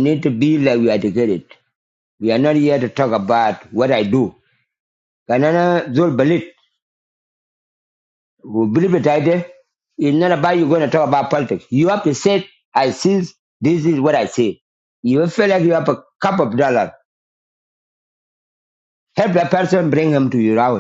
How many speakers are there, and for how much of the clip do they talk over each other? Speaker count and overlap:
1, no overlap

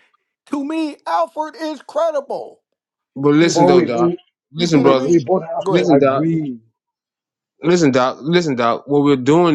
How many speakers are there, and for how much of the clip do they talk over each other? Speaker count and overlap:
3, about 21%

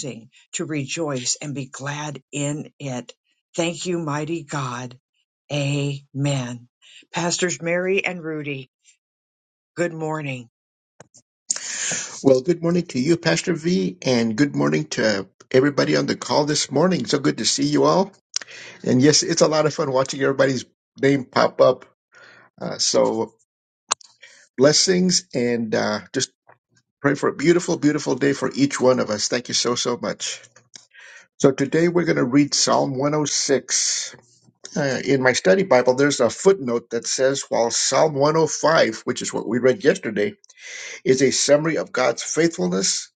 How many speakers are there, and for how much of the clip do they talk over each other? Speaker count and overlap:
2, no overlap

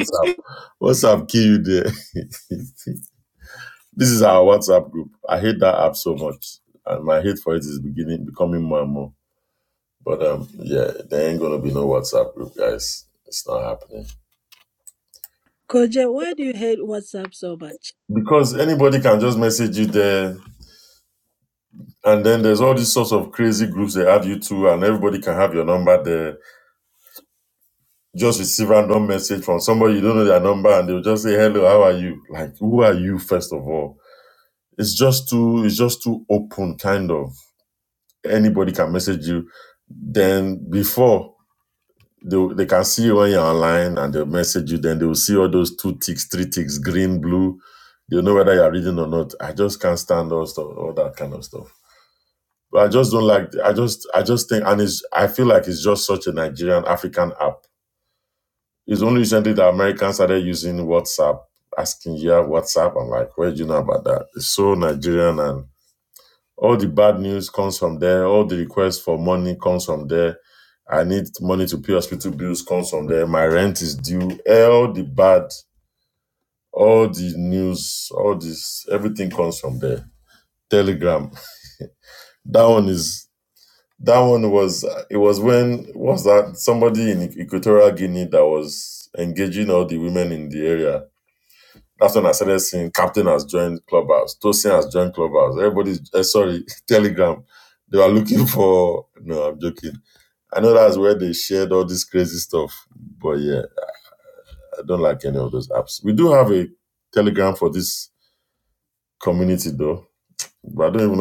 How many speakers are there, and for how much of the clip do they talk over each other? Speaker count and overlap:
2, no overlap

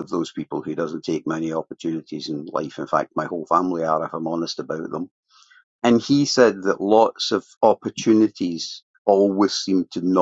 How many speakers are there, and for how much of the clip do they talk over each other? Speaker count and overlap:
1, no overlap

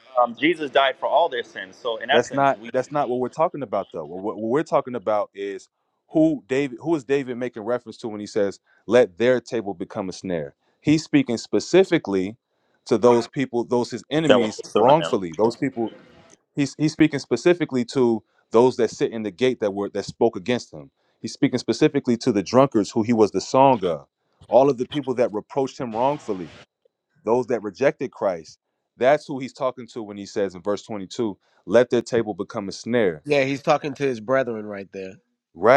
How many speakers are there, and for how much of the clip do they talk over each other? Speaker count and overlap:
3, about 4%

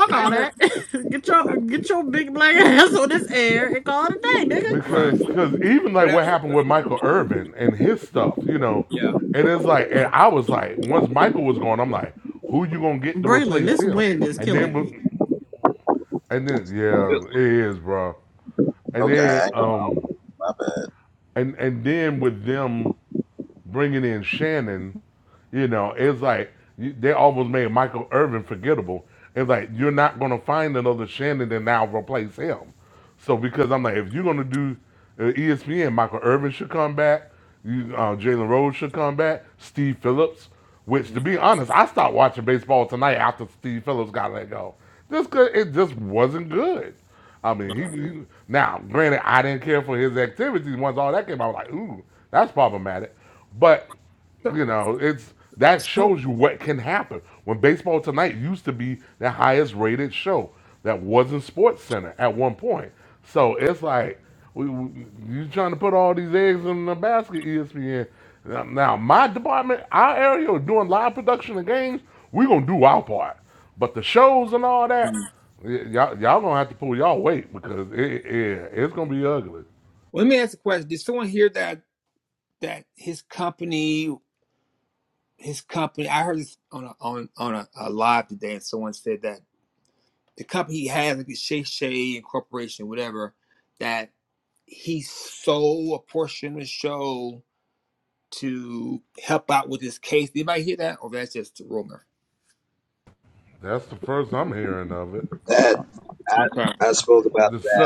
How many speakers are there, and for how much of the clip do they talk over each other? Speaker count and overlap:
4, about 4%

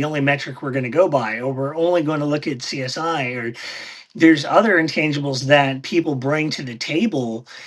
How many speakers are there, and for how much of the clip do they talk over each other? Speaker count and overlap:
1, no overlap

